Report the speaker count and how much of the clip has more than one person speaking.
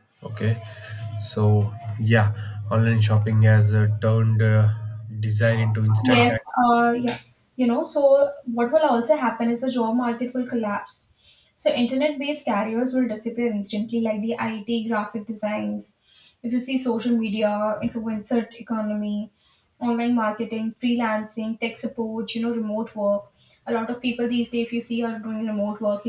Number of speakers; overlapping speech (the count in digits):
2, about 2%